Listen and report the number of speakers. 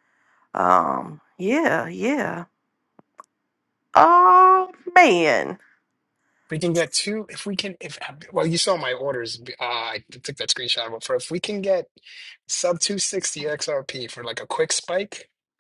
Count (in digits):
2